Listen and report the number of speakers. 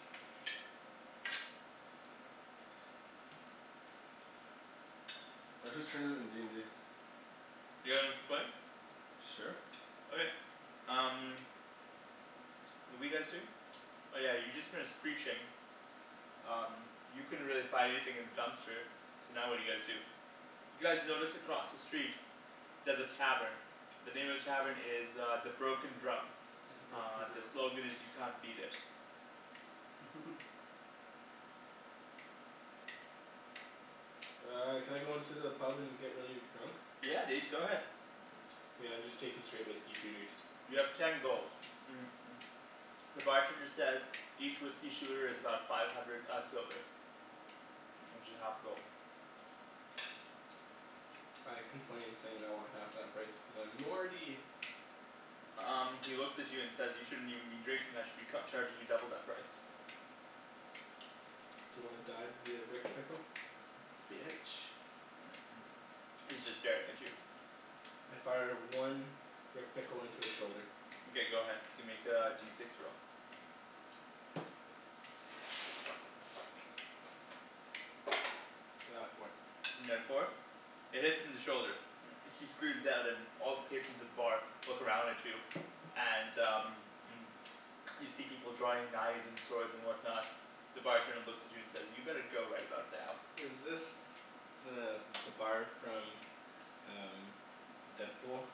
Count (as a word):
three